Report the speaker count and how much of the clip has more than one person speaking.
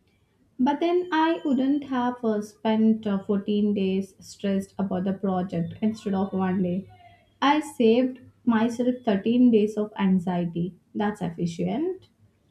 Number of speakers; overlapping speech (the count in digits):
1, no overlap